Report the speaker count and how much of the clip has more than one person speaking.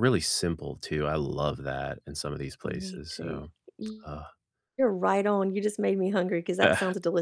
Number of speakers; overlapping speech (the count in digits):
2, about 11%